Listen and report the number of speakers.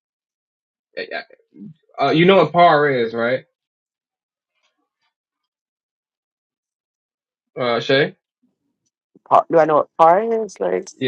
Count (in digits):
2